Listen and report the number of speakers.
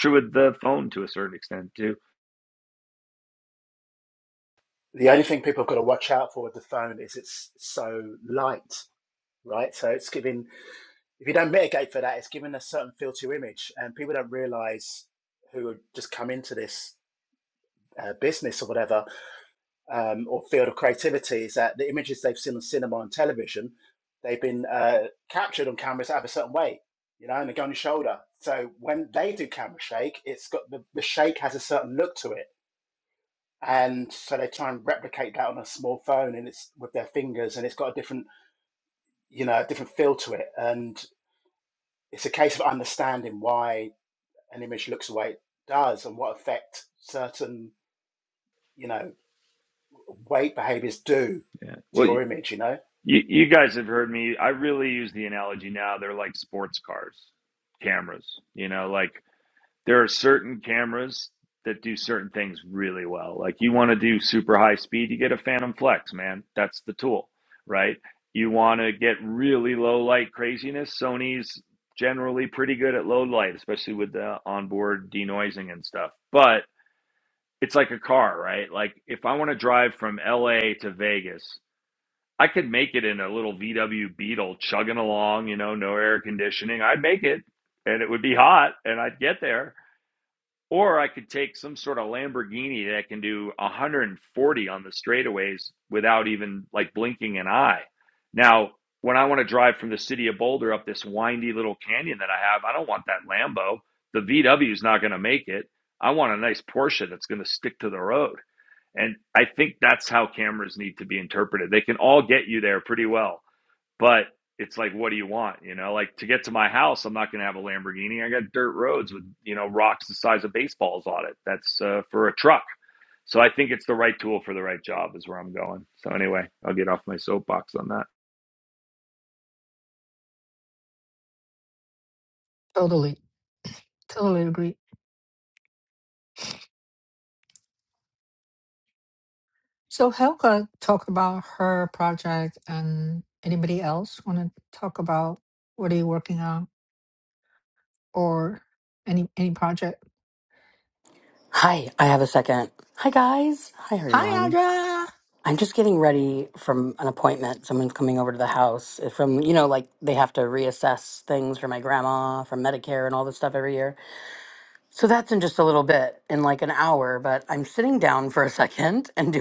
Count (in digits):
4